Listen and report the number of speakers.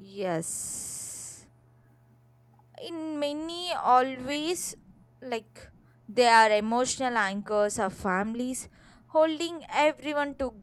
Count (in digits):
1